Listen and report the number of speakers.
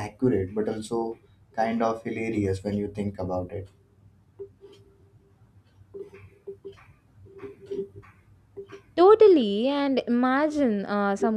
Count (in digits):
2